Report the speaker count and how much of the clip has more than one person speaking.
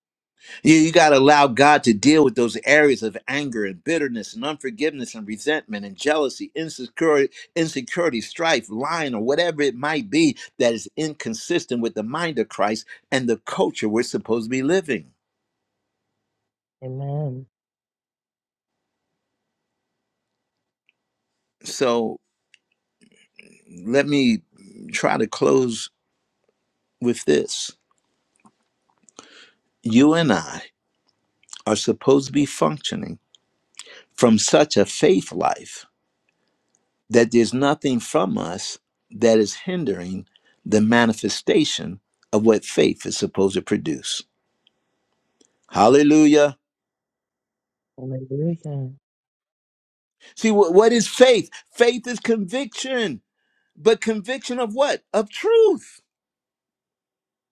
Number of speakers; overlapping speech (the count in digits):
2, no overlap